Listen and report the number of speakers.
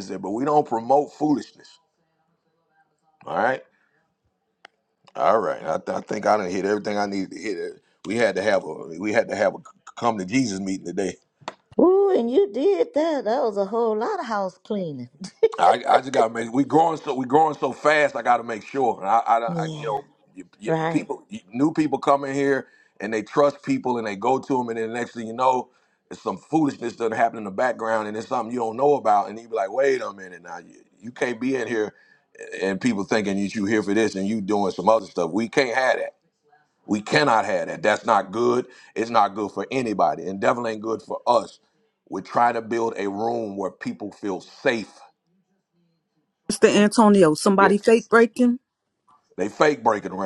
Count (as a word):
three